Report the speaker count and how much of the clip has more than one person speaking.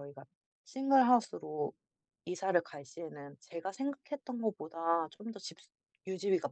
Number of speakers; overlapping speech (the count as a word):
one, no overlap